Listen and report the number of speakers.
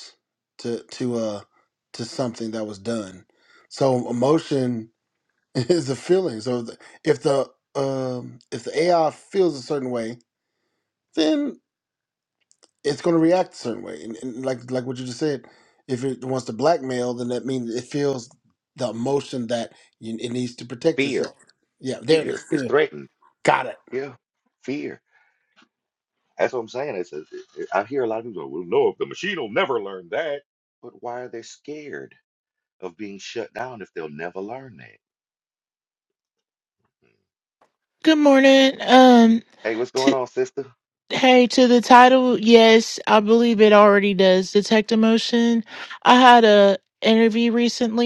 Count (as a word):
three